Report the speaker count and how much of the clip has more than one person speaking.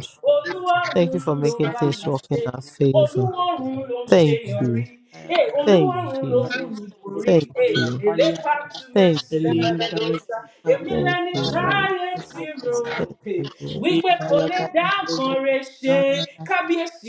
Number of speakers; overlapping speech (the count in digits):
3, about 57%